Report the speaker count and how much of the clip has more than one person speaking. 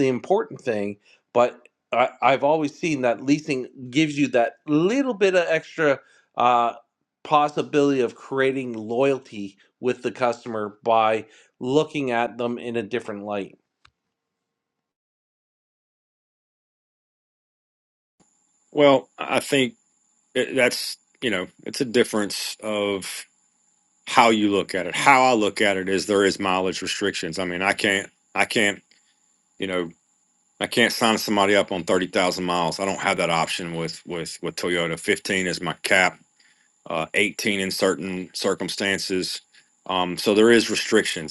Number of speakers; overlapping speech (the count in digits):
2, no overlap